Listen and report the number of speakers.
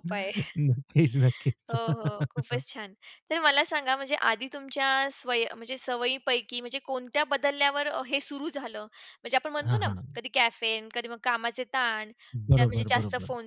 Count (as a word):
two